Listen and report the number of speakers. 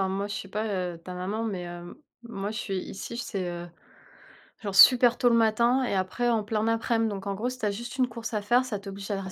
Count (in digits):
1